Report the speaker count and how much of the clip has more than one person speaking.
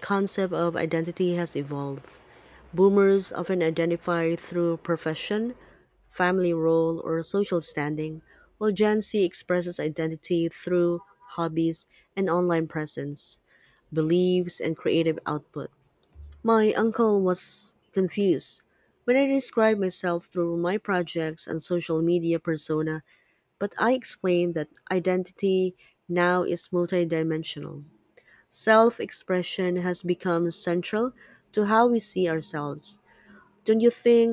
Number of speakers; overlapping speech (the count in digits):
1, no overlap